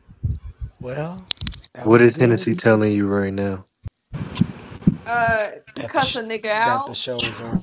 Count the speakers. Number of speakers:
3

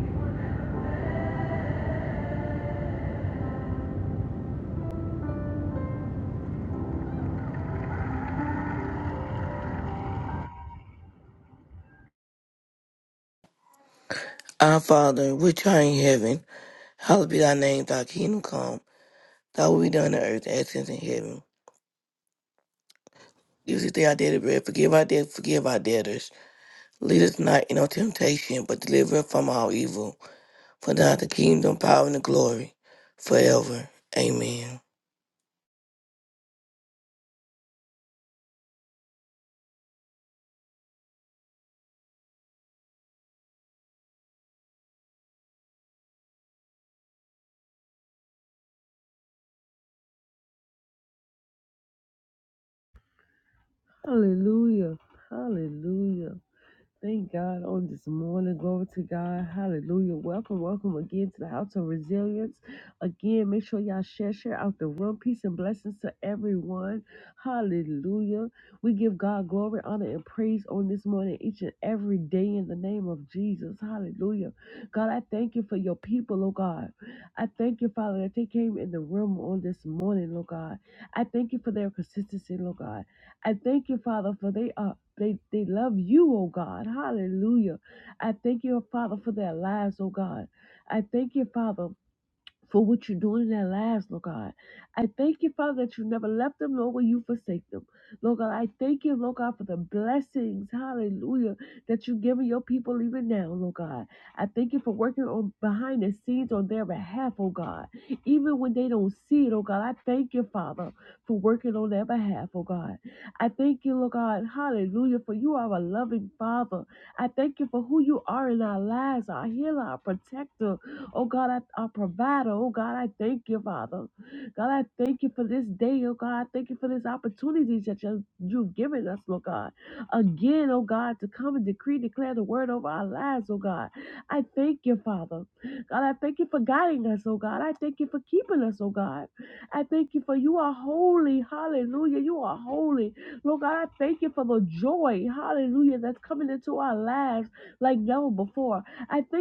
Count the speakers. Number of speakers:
2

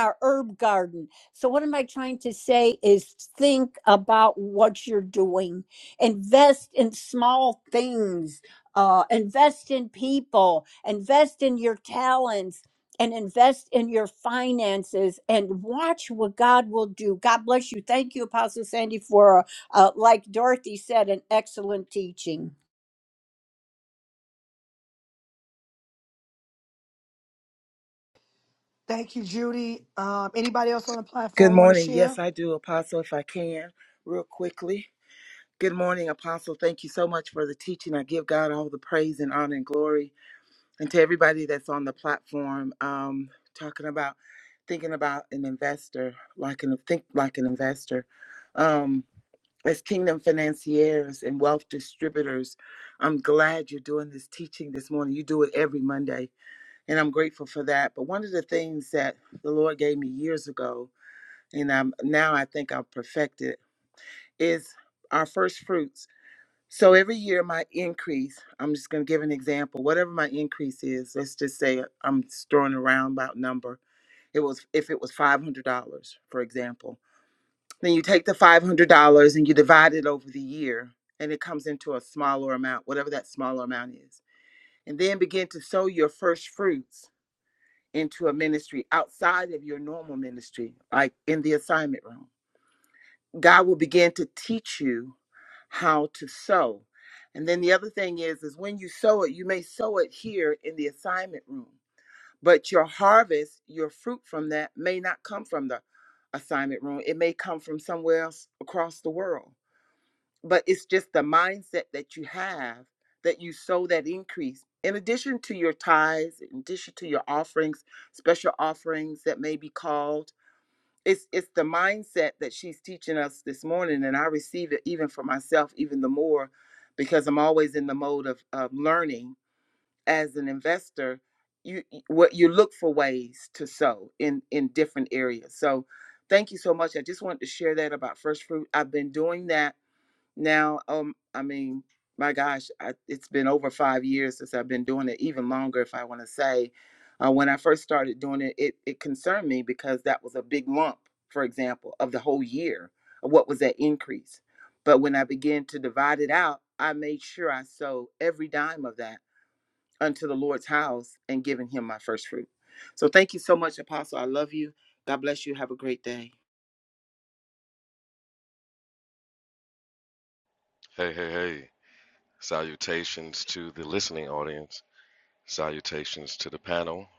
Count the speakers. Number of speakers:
4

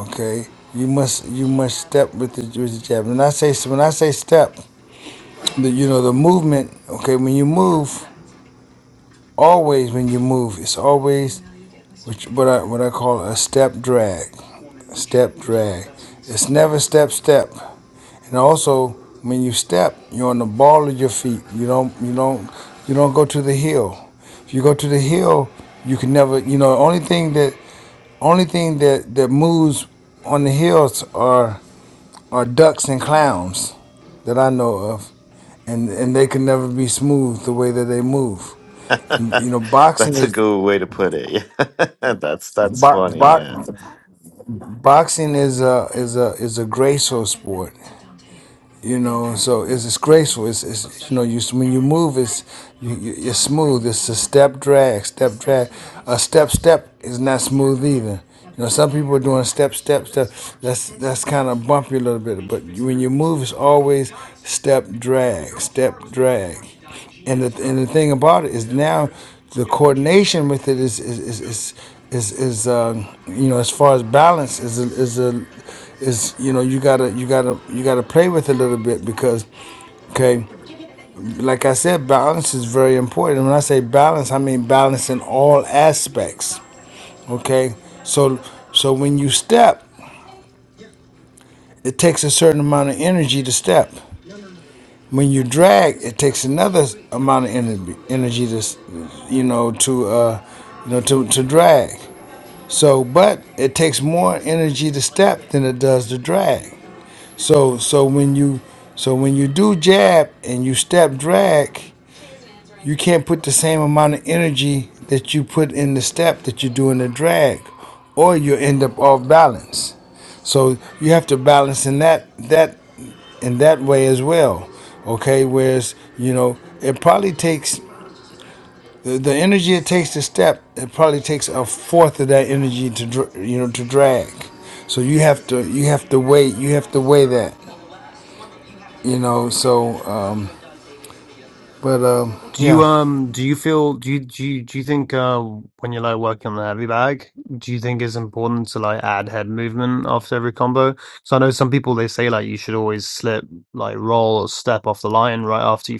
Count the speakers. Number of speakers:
3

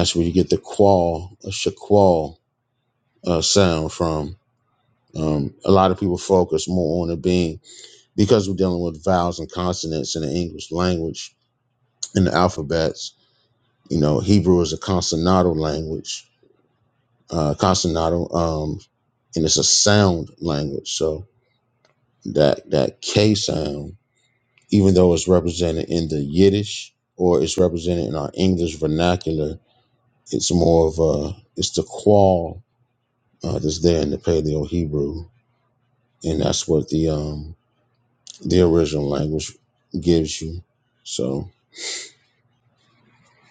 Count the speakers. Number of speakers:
1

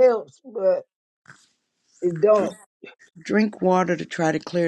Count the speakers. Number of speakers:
2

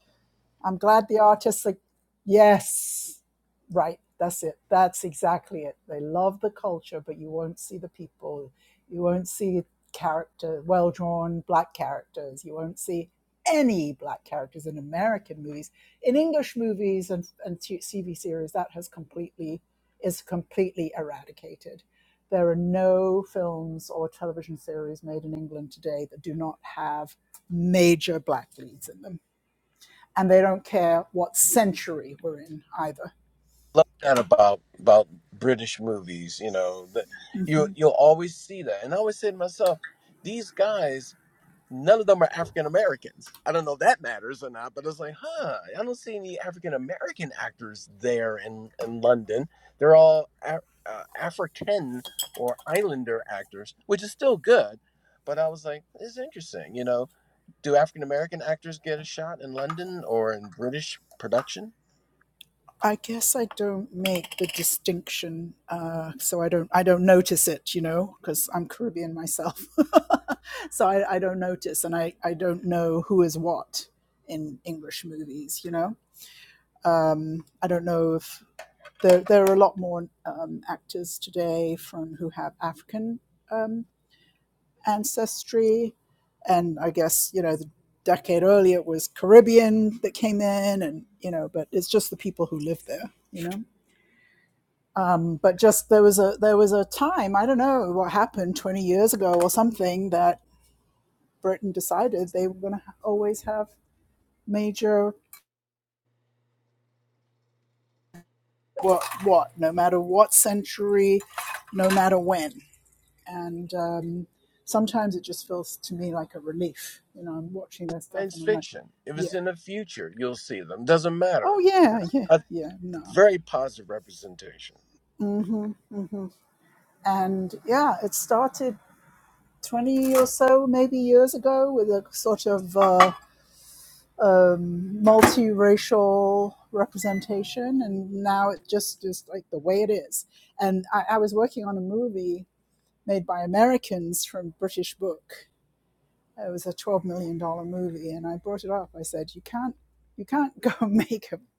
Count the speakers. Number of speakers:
2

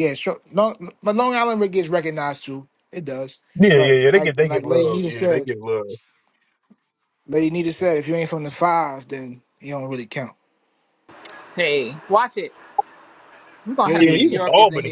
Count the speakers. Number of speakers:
3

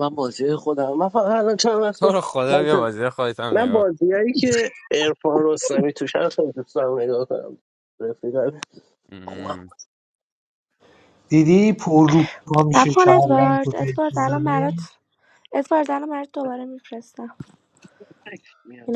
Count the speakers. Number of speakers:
4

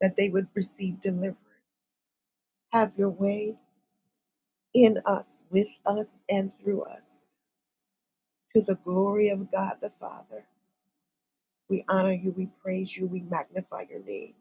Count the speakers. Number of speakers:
1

